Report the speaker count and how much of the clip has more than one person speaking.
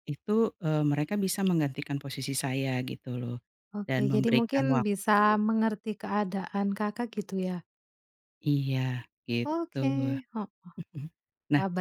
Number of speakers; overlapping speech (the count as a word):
two, about 14%